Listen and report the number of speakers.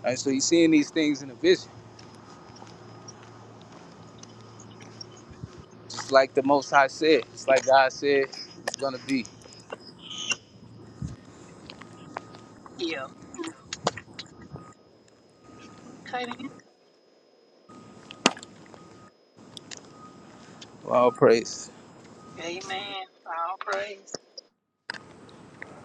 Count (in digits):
2